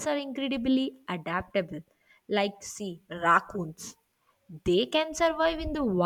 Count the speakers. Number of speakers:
1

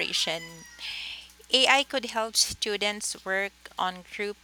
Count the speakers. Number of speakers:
1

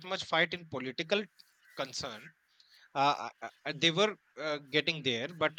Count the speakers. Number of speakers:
1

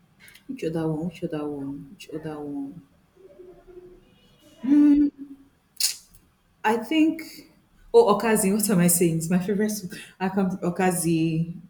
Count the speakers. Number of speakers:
1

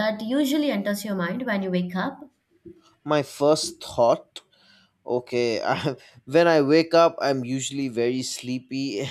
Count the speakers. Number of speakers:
2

